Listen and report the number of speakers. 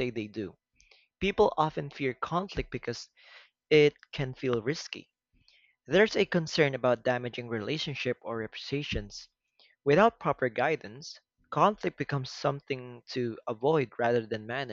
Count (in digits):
1